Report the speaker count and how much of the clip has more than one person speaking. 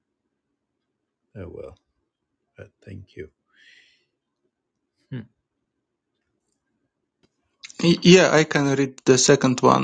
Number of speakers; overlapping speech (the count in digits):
2, no overlap